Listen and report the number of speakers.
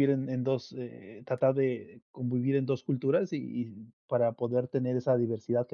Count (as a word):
one